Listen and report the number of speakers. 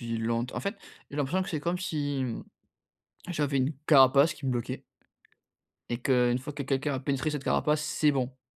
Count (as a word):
one